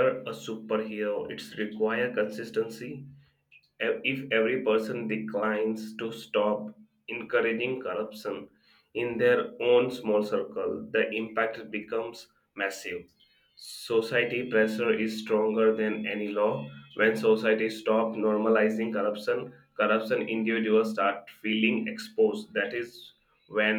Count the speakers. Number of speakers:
one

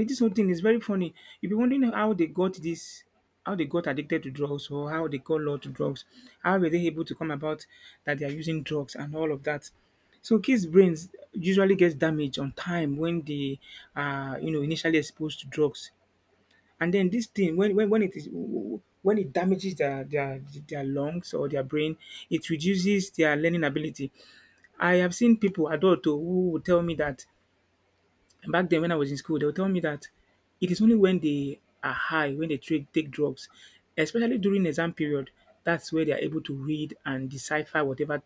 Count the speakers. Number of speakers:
one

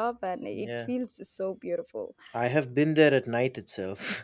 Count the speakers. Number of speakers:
two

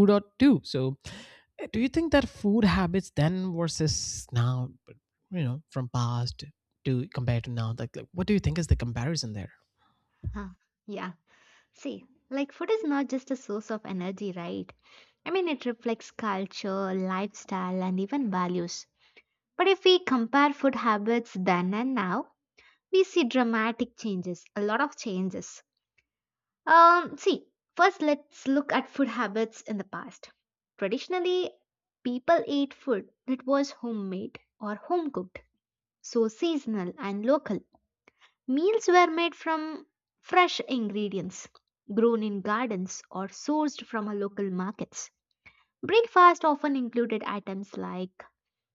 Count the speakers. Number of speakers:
two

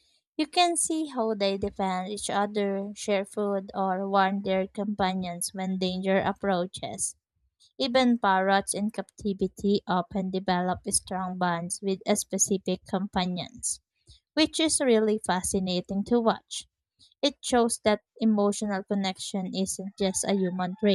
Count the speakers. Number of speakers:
one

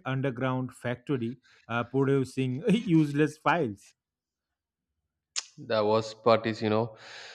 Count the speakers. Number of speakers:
two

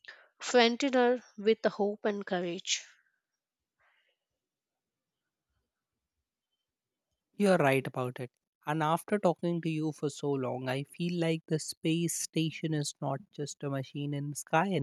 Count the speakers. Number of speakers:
two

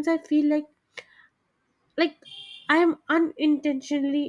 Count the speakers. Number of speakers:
one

